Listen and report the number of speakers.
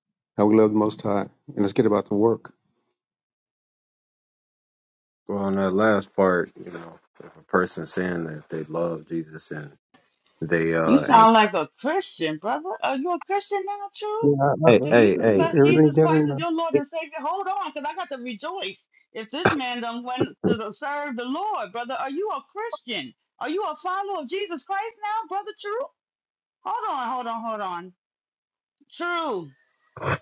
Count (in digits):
3